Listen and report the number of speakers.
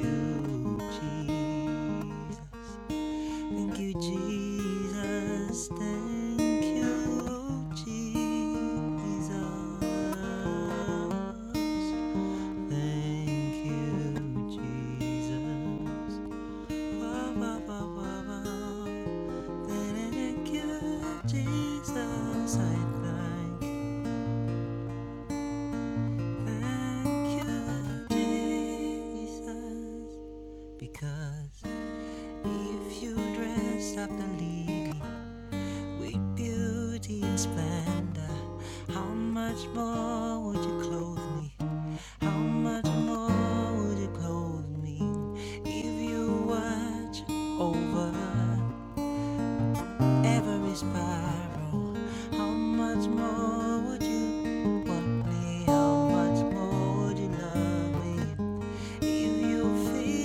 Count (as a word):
one